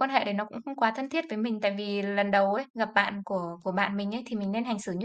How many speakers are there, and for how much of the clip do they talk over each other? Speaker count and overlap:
1, no overlap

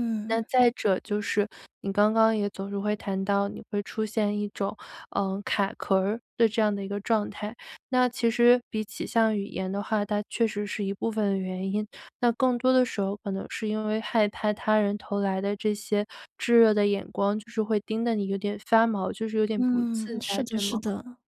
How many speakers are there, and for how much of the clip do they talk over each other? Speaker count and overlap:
2, about 6%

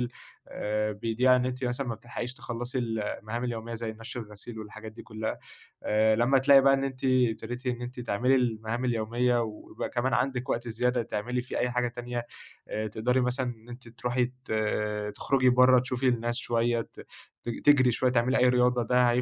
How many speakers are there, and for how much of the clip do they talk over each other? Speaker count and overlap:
1, no overlap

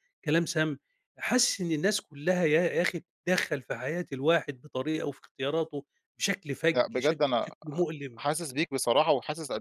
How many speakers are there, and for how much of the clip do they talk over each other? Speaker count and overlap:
2, about 8%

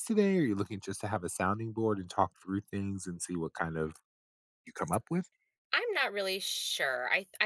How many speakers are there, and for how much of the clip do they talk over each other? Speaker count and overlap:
2, no overlap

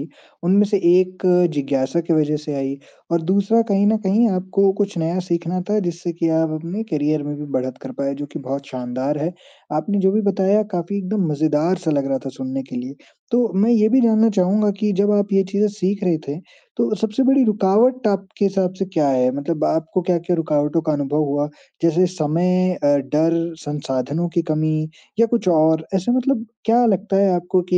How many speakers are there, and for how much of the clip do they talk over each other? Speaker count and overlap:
1, no overlap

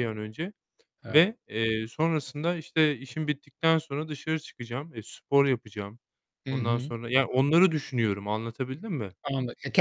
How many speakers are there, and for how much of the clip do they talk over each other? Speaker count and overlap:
2, about 5%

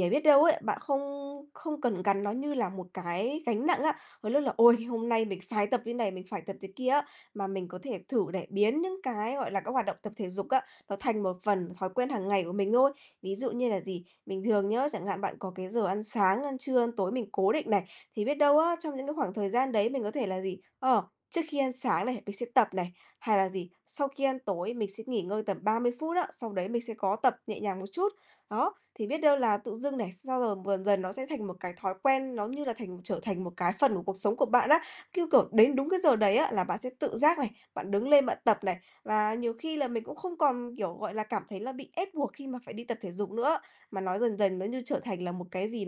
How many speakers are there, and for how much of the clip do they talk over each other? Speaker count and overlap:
1, no overlap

